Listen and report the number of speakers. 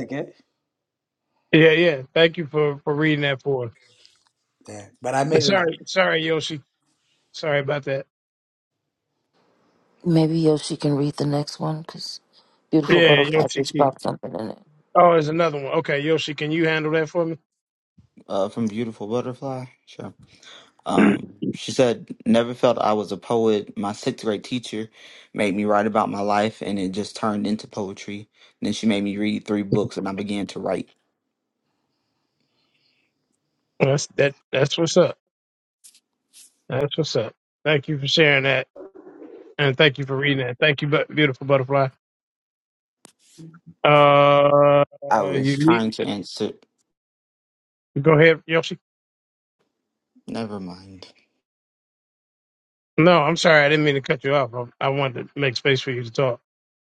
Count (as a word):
four